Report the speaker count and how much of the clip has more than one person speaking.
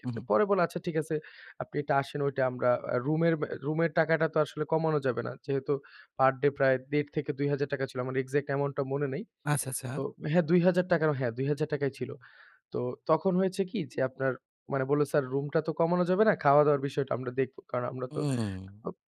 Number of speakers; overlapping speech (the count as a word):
two, about 2%